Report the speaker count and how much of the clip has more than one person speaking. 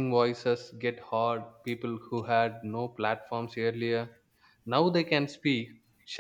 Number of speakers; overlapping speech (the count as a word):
one, no overlap